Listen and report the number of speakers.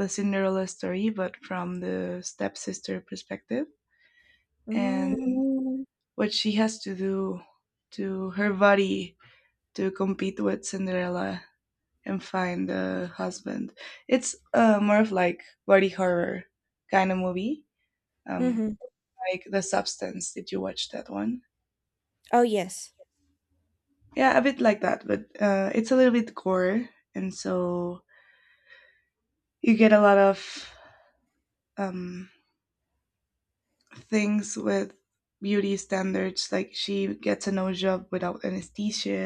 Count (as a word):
two